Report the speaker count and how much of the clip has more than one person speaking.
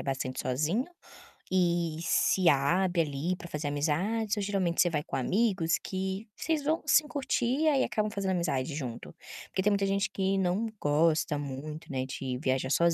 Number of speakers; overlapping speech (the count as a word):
one, no overlap